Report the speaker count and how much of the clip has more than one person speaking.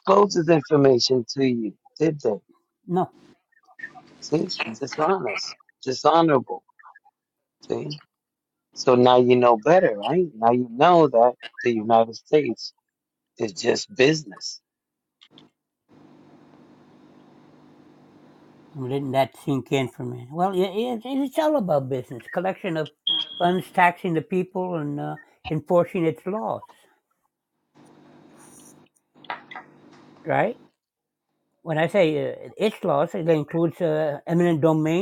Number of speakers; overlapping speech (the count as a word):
two, no overlap